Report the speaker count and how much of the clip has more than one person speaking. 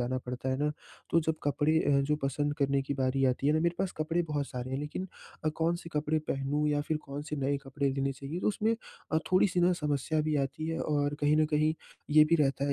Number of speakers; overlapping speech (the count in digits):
1, no overlap